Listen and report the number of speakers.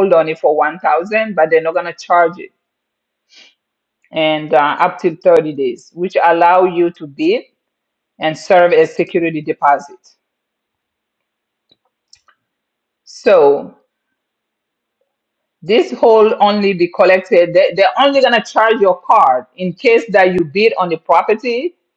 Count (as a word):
one